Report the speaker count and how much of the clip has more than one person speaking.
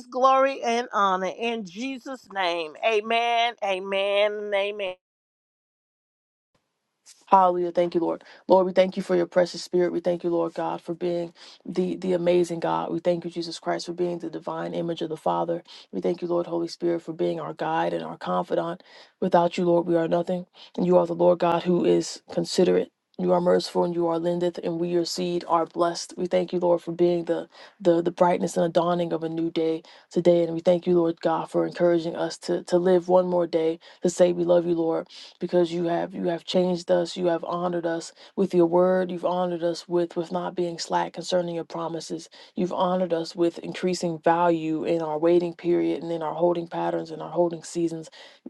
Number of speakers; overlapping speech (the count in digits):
2, no overlap